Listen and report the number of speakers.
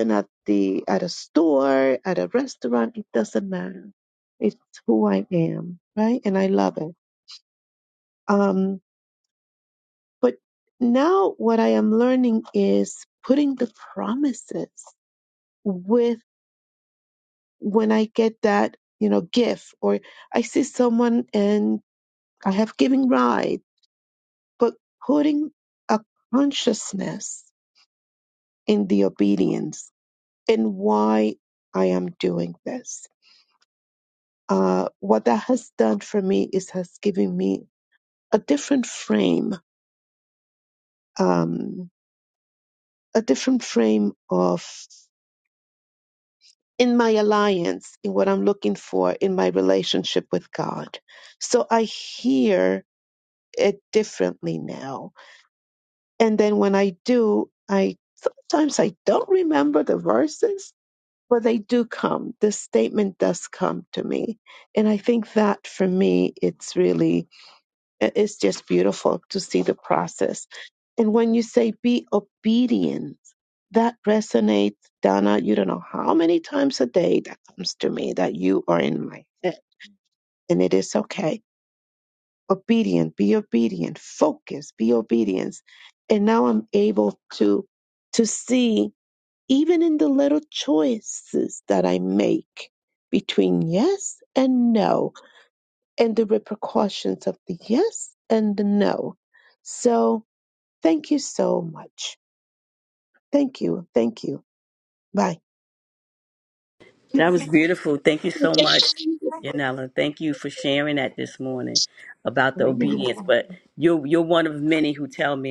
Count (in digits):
2